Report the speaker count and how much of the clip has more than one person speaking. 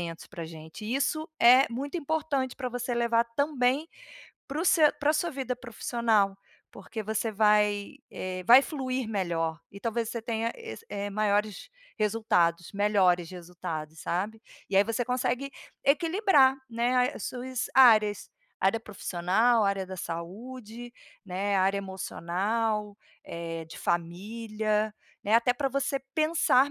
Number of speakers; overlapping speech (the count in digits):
1, no overlap